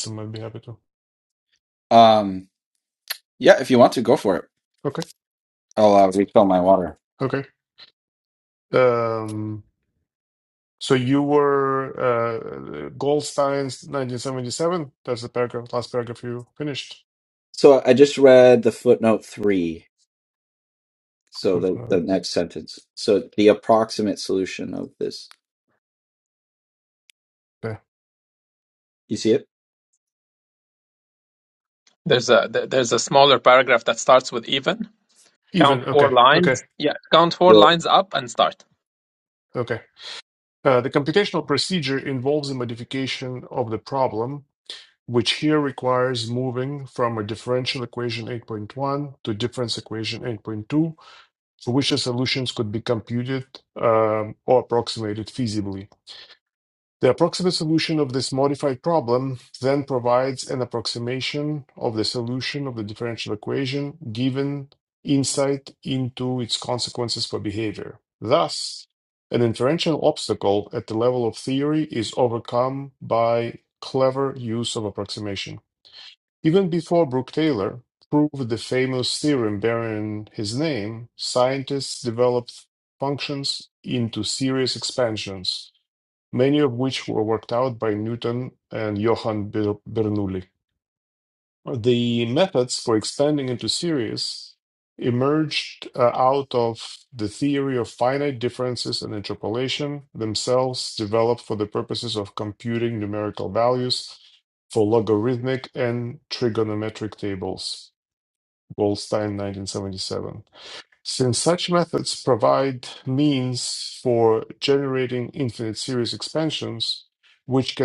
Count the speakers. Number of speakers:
3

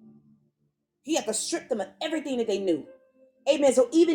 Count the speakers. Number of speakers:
1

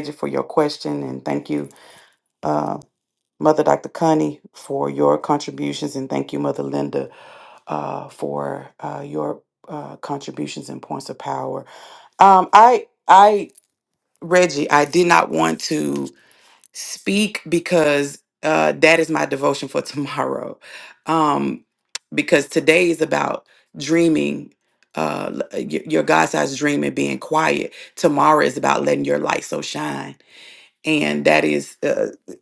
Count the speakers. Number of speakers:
1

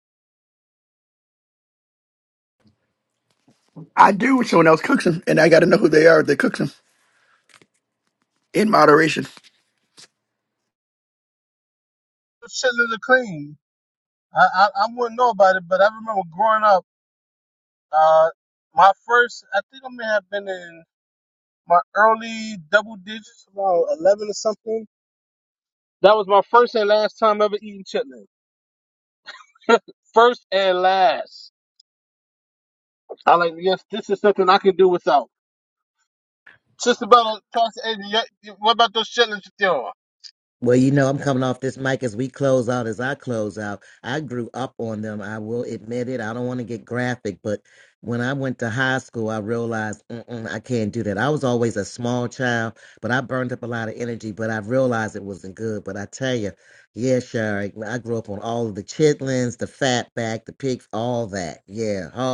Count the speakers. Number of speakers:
3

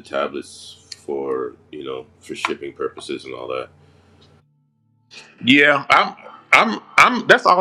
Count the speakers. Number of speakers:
2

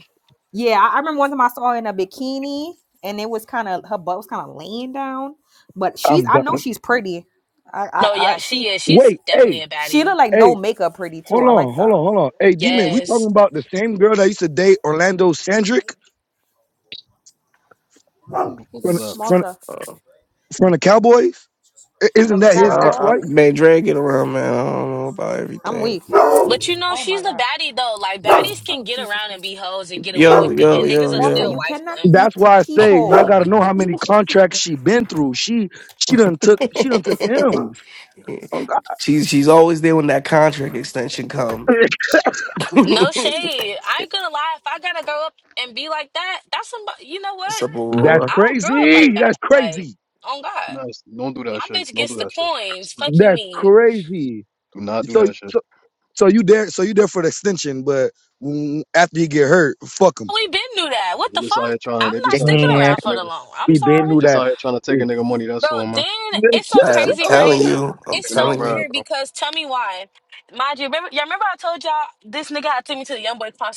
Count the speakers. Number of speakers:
5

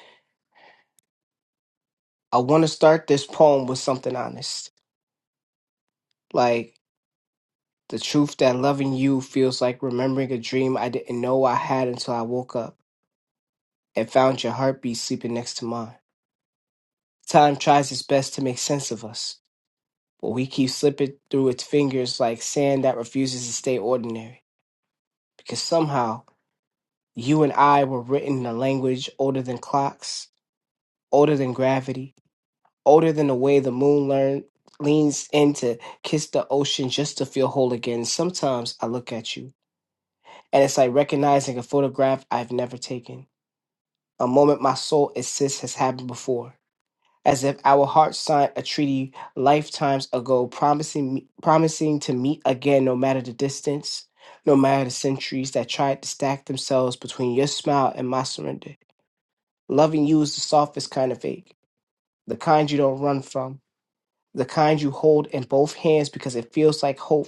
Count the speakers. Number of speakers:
1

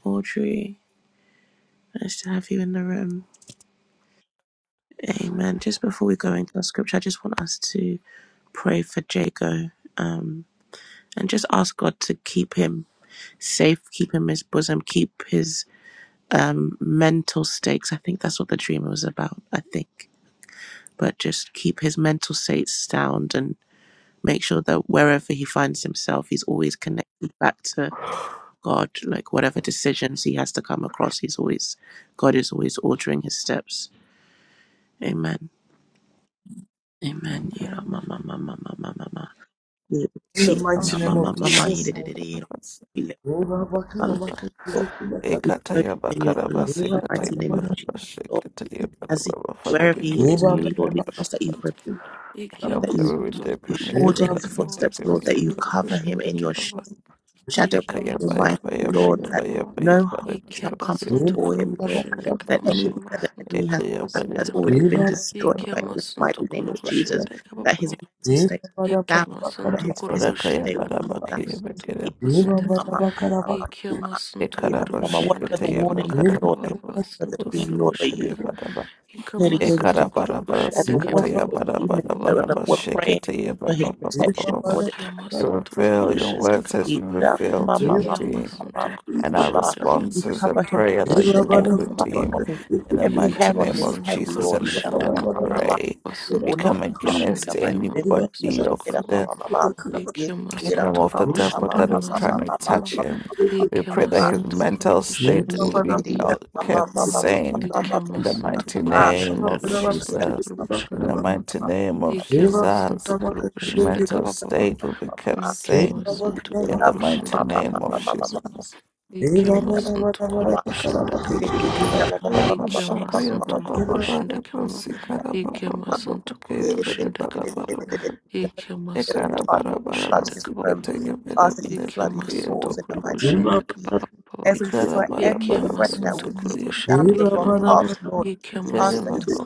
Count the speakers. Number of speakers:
4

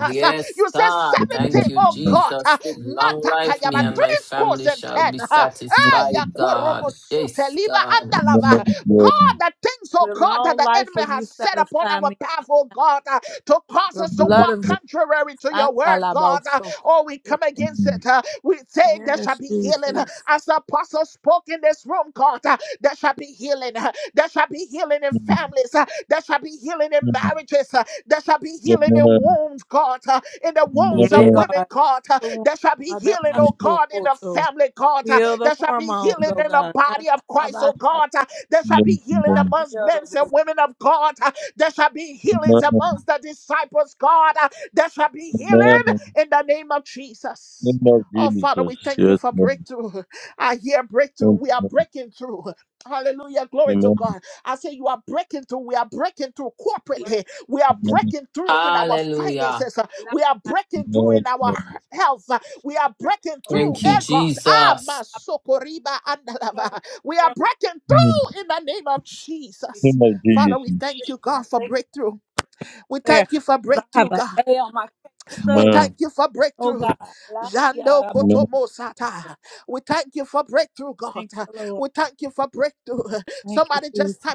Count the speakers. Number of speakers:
4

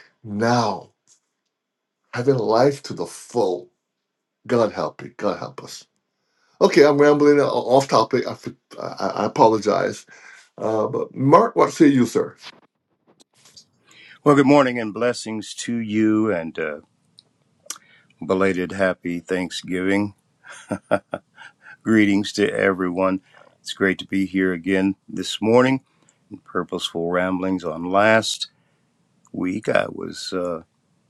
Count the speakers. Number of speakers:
2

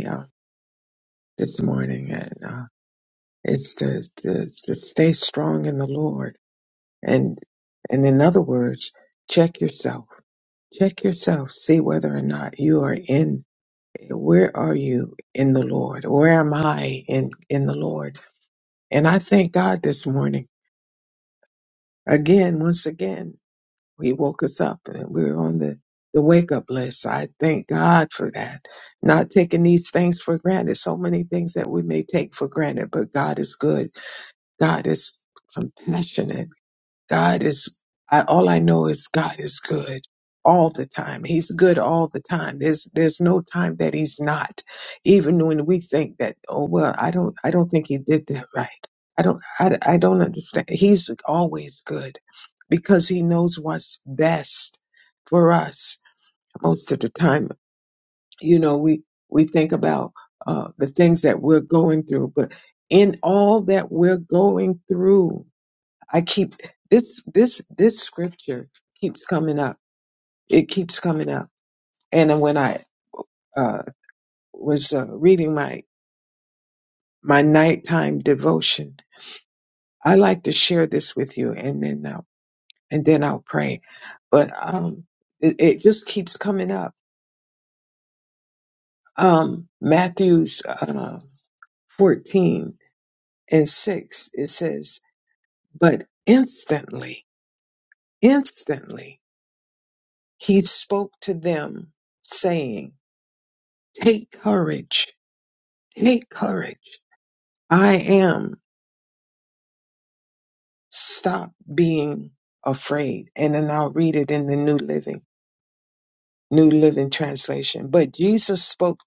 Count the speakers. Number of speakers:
1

